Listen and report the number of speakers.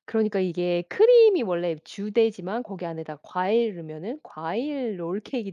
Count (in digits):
1